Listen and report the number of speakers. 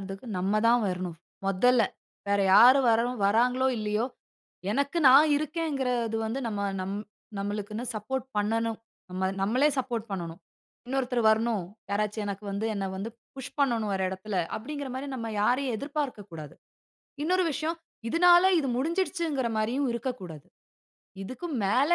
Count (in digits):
1